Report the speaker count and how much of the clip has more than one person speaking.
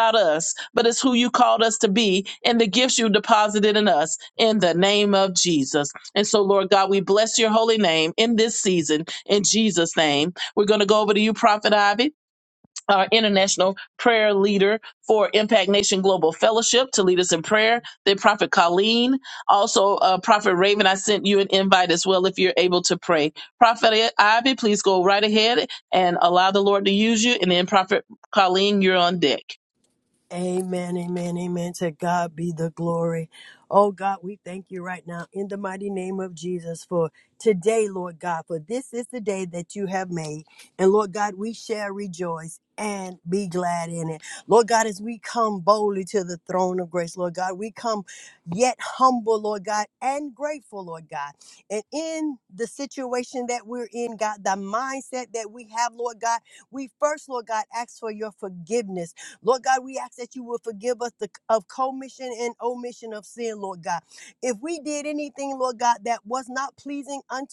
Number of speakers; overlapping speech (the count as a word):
two, no overlap